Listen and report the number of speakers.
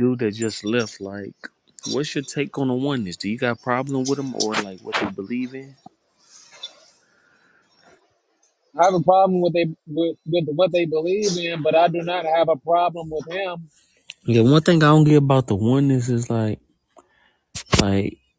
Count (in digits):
2